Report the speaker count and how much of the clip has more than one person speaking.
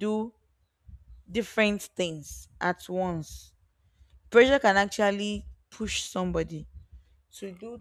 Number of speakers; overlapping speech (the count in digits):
1, no overlap